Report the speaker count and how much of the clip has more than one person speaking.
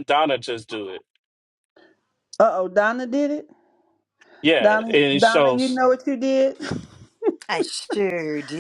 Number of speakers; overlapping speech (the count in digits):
3, about 13%